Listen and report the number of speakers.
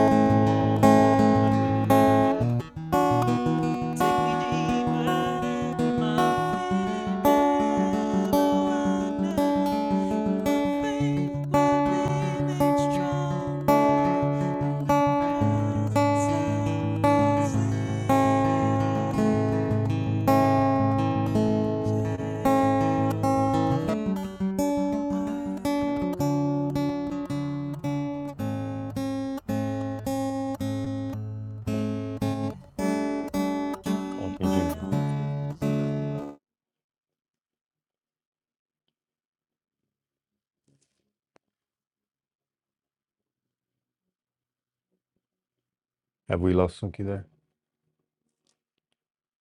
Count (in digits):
2